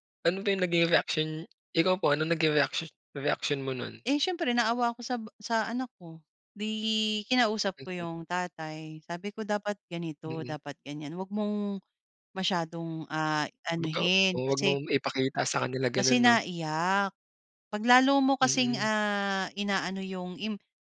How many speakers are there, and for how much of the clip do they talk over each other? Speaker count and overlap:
2, about 11%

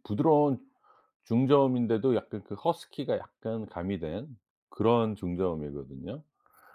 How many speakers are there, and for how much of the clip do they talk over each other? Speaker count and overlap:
1, no overlap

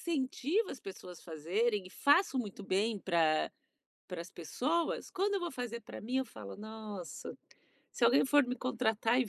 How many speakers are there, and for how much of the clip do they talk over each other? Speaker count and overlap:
1, no overlap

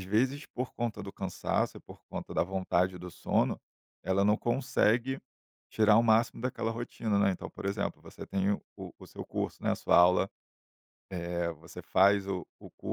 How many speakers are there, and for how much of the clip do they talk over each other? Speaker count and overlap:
1, no overlap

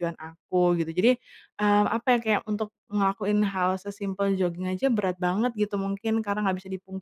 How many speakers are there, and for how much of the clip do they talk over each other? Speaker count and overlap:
1, no overlap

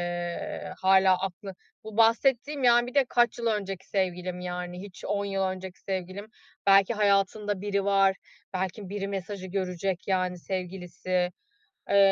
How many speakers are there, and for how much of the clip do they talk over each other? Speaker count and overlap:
1, no overlap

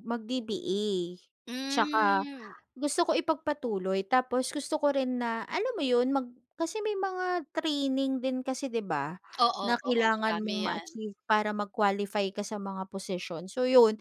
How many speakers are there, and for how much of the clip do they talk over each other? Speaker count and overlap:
2, about 13%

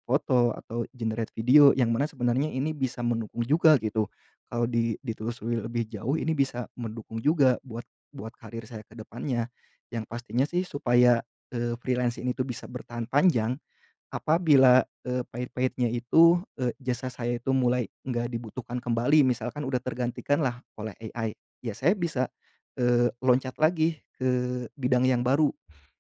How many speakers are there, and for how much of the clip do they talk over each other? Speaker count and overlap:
1, no overlap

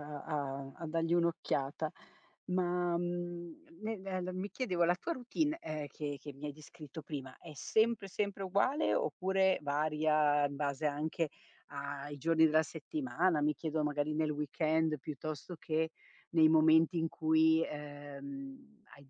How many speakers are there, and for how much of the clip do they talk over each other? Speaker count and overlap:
1, no overlap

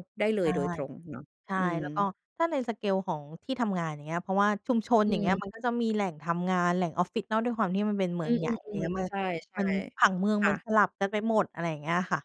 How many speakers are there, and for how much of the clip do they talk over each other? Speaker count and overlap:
2, about 11%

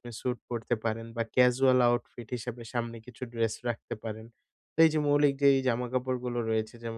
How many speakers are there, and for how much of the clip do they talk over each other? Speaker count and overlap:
1, no overlap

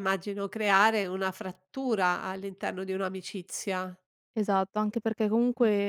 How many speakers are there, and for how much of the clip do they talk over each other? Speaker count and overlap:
2, about 1%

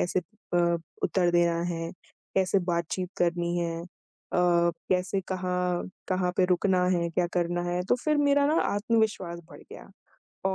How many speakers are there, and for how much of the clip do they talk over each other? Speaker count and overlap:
1, no overlap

